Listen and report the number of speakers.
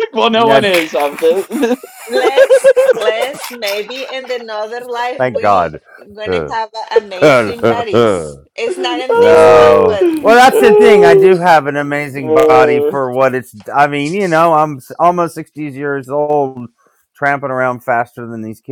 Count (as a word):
three